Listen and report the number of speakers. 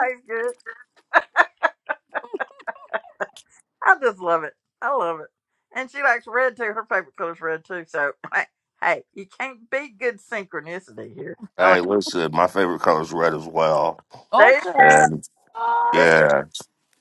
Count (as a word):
three